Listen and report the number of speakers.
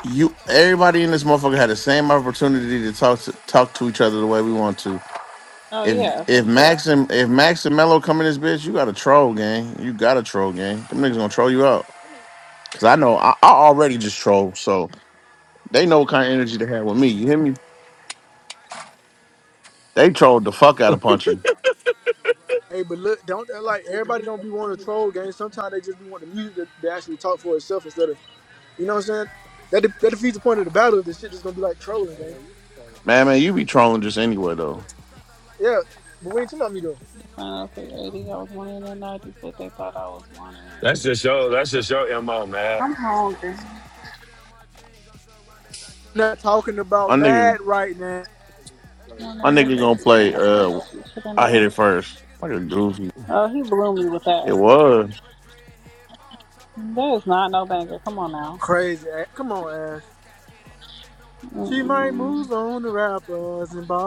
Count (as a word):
four